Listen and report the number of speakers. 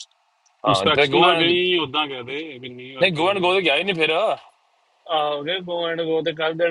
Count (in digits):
3